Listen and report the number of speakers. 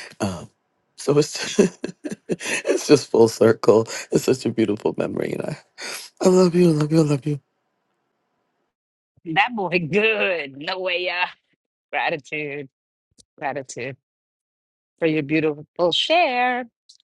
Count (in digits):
2